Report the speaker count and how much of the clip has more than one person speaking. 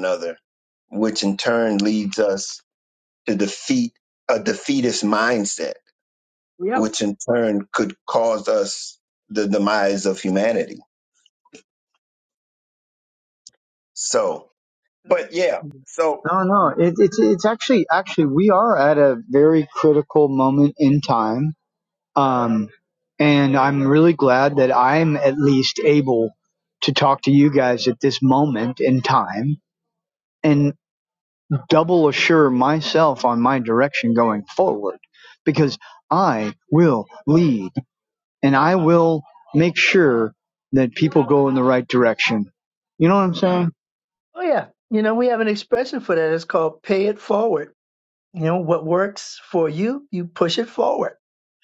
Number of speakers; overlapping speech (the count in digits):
3, under 1%